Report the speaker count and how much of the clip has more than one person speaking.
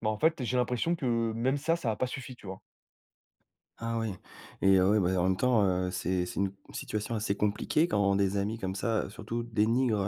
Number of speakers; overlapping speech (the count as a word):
two, no overlap